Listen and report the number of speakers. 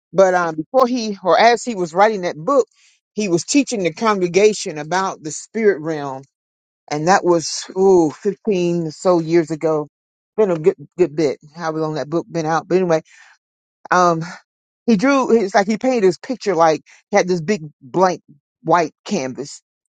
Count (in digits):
1